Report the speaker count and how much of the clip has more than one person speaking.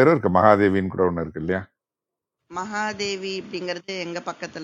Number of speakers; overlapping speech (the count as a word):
two, no overlap